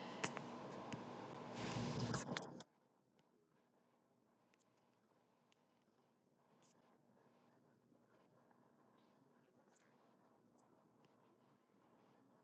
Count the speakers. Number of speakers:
0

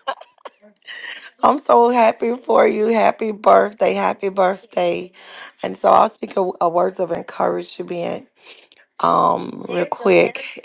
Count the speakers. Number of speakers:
1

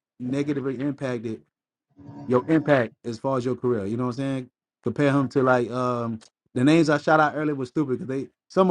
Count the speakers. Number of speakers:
1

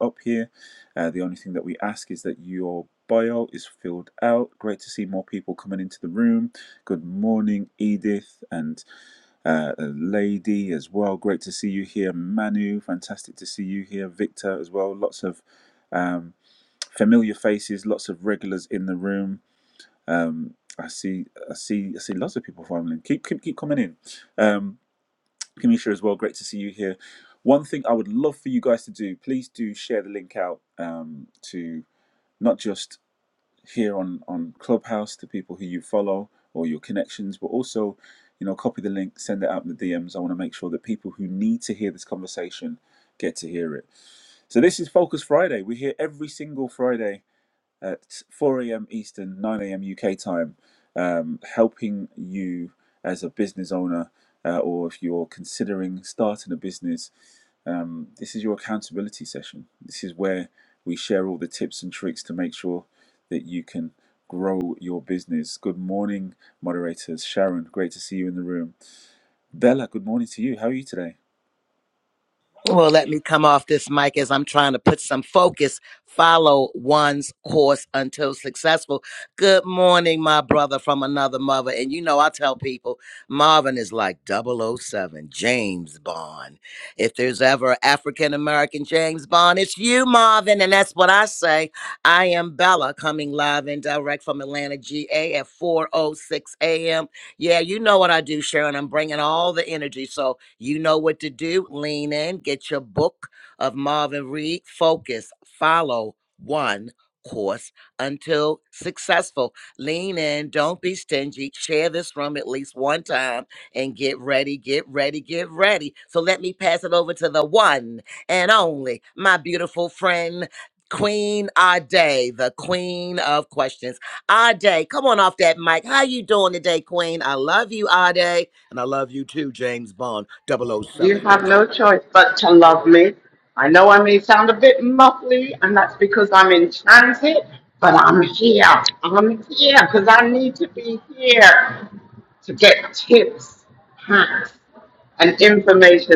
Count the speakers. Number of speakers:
3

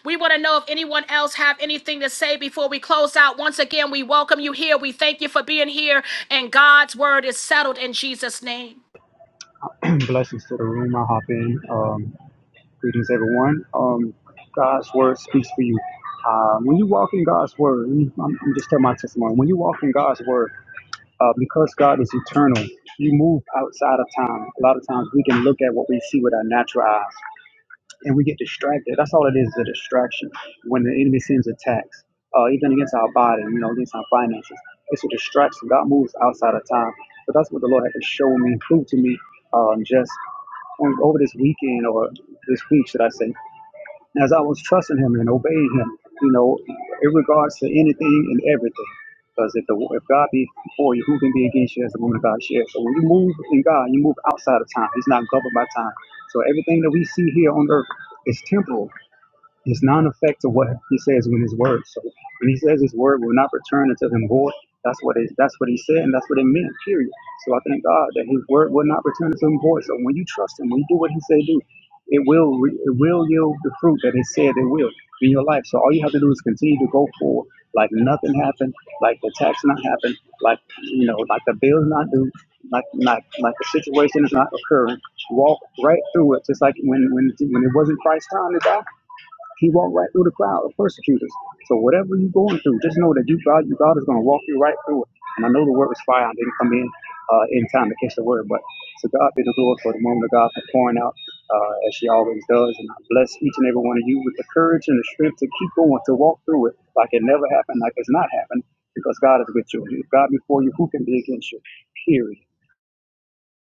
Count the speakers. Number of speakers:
2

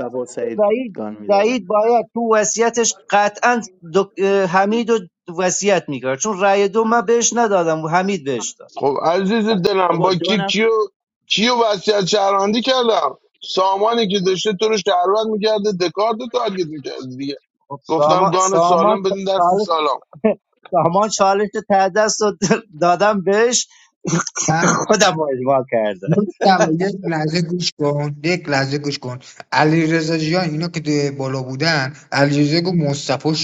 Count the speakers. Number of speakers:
4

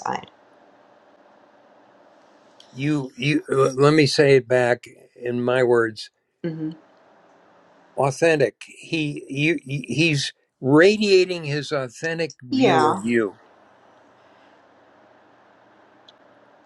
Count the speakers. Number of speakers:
2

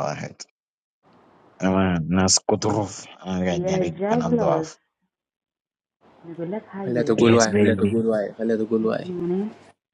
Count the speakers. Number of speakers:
3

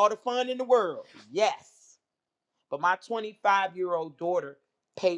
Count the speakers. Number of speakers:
1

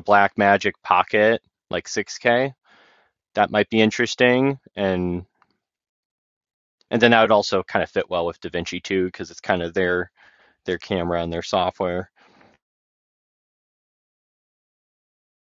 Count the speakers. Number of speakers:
1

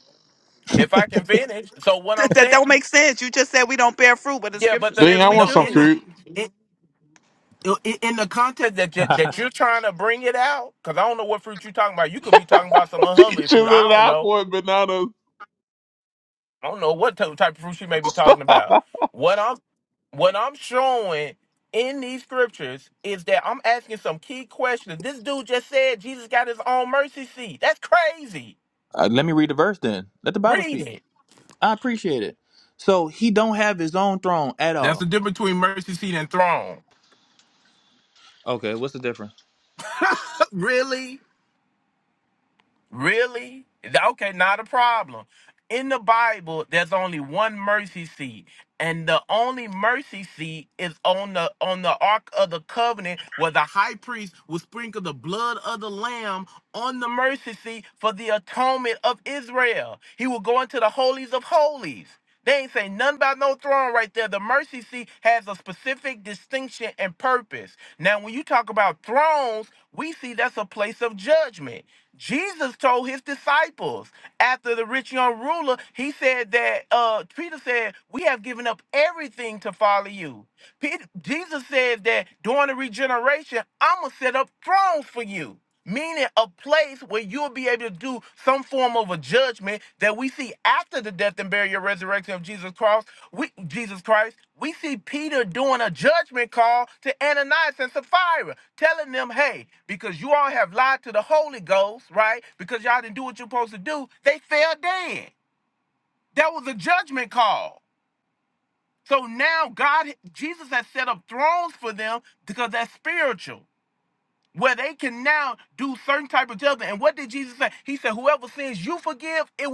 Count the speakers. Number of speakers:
4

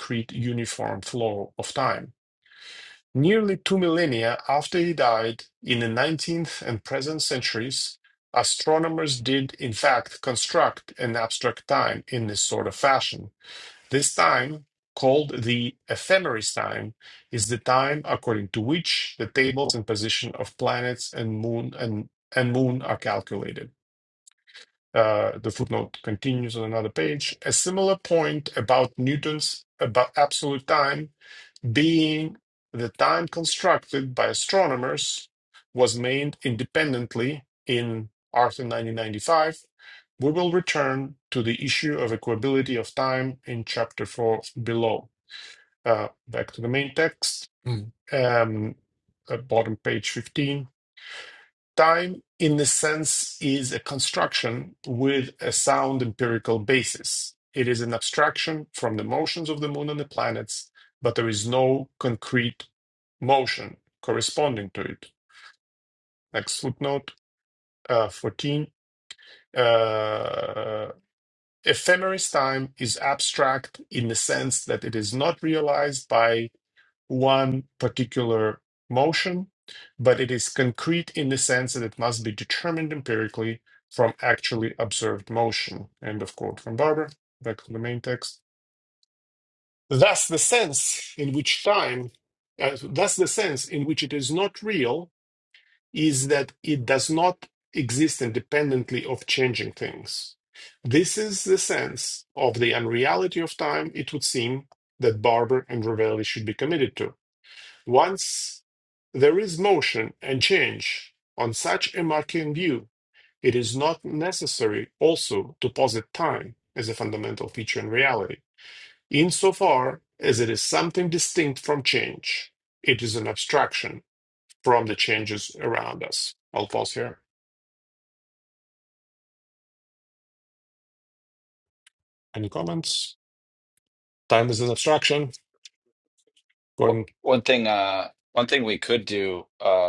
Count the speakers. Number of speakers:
2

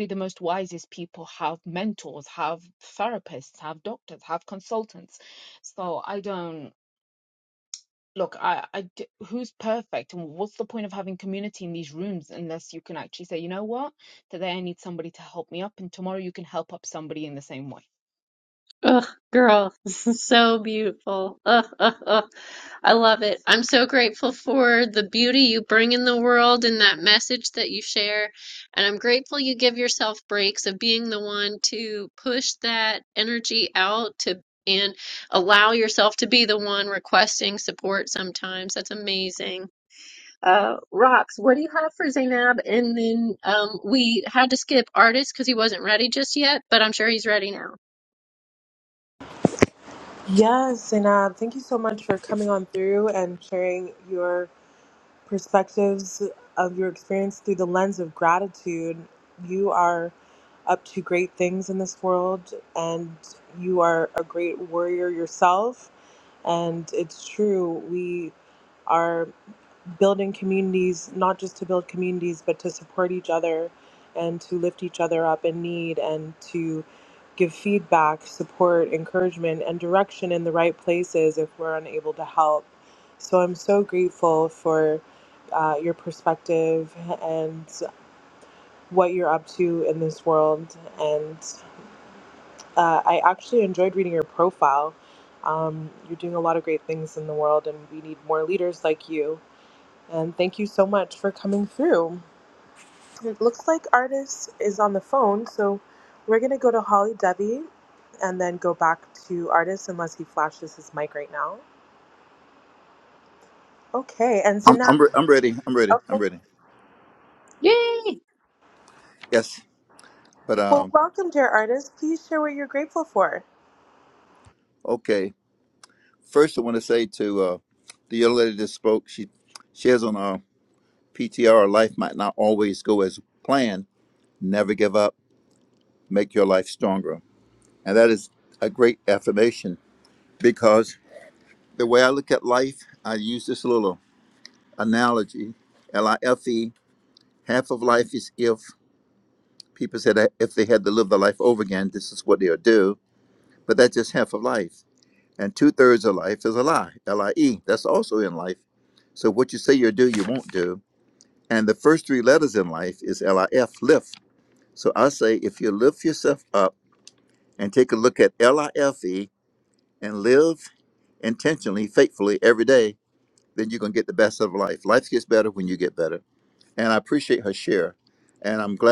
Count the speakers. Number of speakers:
4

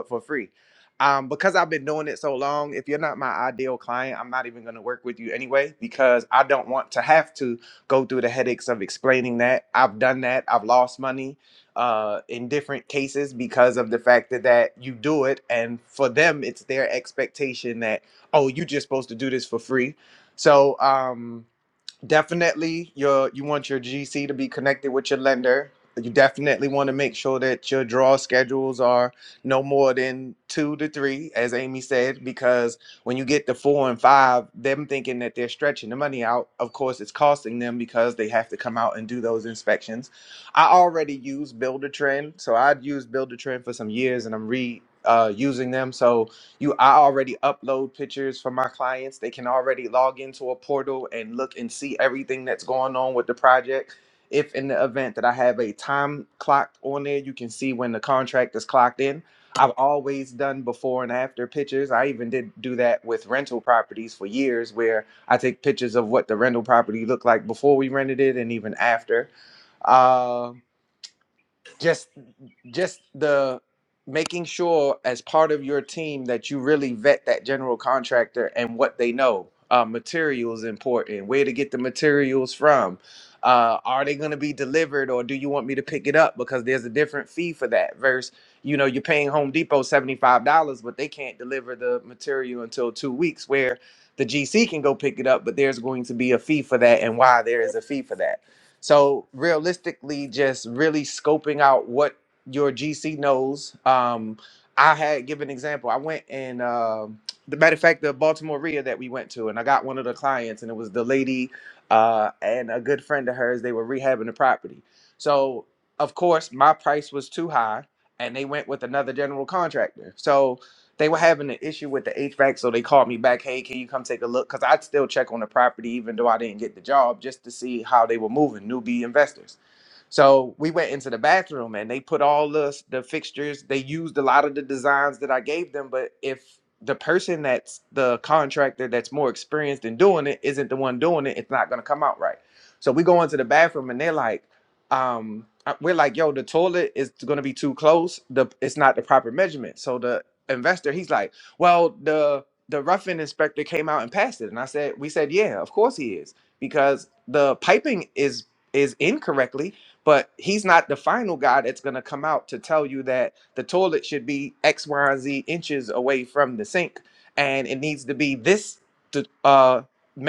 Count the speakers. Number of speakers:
1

